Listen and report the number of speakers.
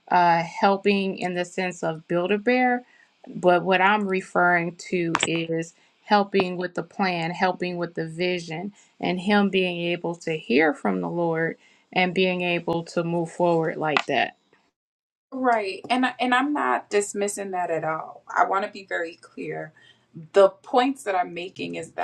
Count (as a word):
two